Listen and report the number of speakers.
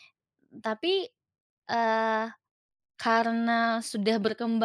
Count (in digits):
1